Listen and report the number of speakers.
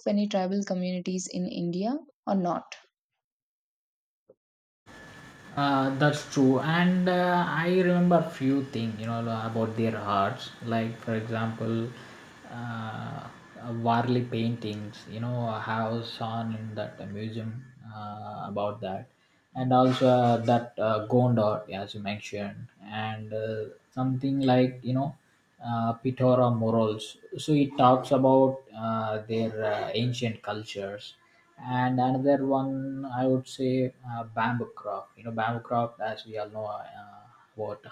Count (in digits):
2